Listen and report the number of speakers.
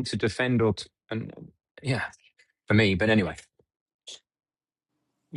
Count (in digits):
1